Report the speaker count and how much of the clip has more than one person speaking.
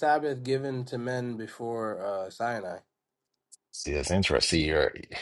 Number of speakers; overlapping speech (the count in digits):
2, no overlap